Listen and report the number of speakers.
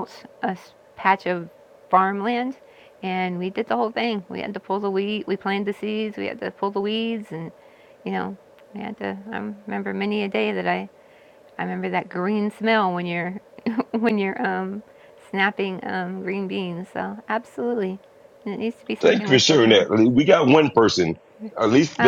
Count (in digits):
2